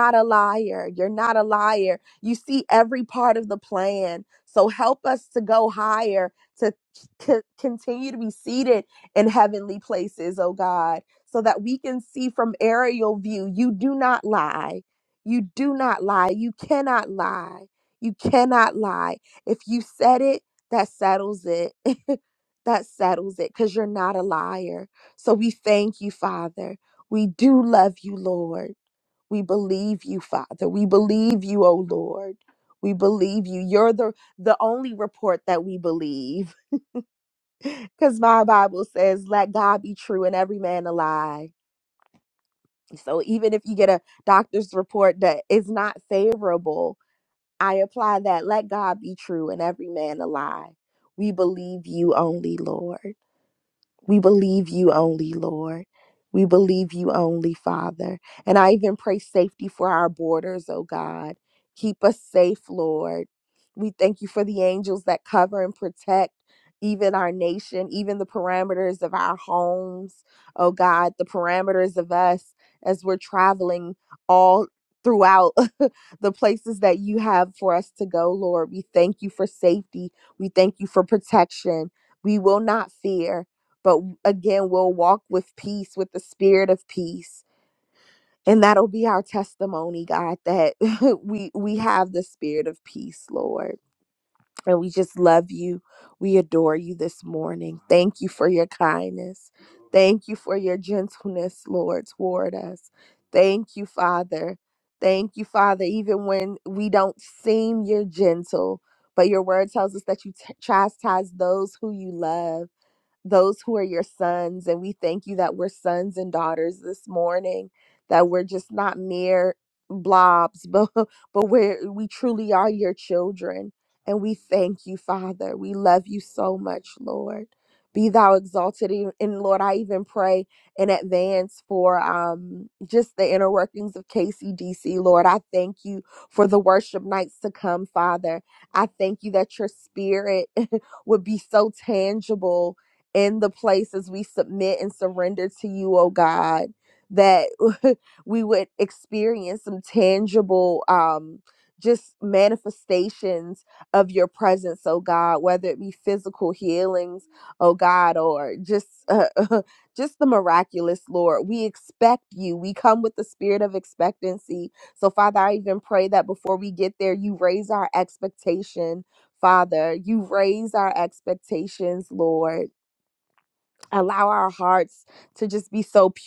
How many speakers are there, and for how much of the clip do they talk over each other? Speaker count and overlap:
1, no overlap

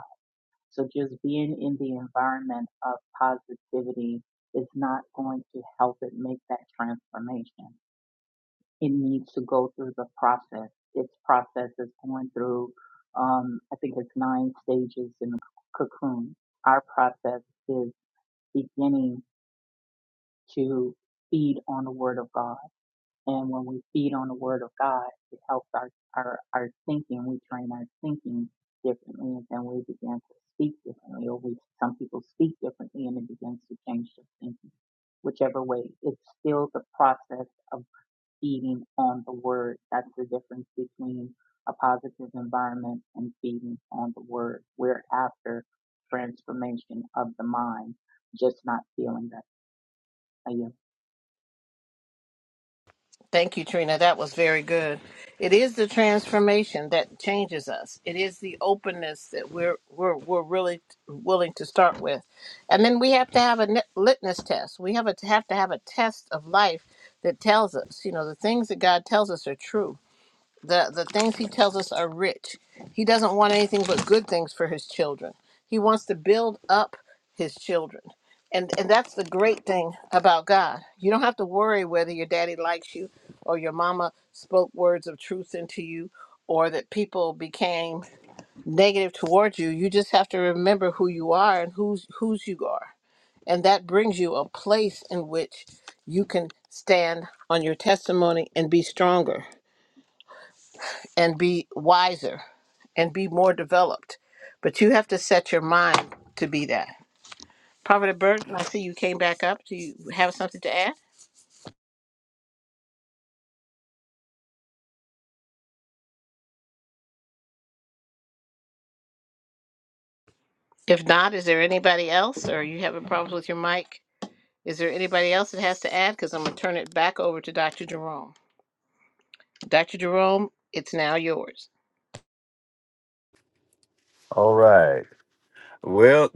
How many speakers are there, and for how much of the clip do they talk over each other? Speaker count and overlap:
3, no overlap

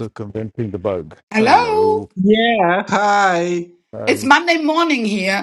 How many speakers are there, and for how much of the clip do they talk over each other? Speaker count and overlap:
3, about 18%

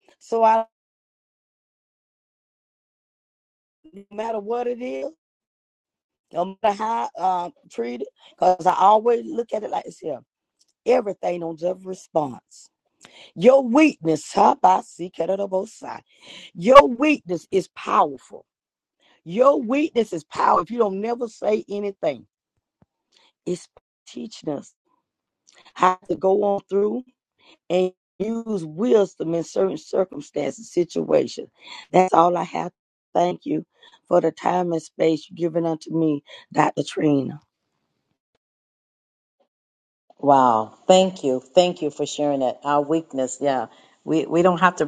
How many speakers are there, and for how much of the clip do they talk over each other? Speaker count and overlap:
2, no overlap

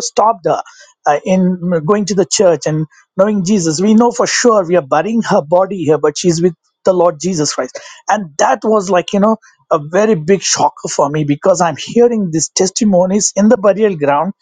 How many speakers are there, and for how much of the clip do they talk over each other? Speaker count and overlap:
1, no overlap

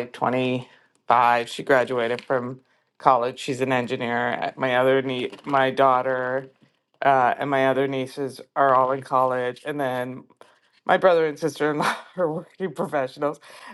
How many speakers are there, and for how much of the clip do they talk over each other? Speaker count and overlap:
1, no overlap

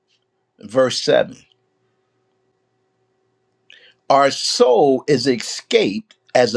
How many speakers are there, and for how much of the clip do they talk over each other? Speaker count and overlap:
1, no overlap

